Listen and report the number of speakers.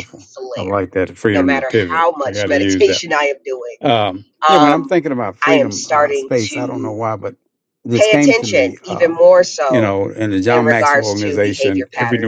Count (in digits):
2